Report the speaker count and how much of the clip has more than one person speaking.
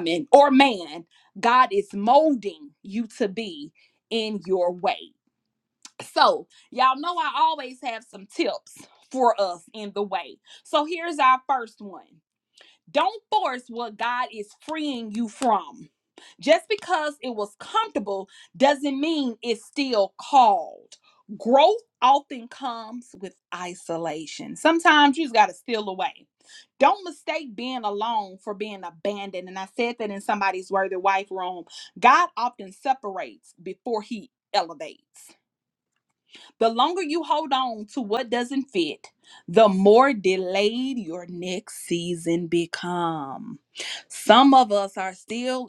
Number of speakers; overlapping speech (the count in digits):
1, no overlap